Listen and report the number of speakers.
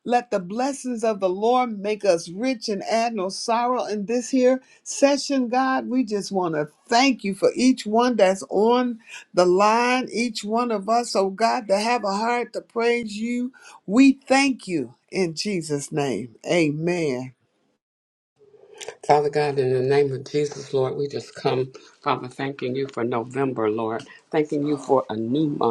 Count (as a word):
two